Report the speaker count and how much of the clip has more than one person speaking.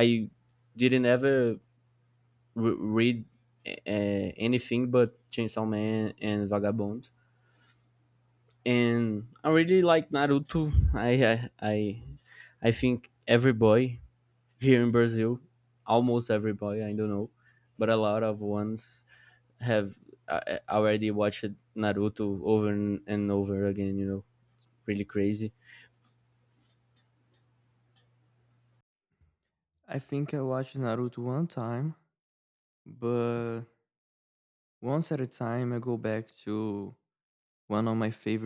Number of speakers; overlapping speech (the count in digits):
2, no overlap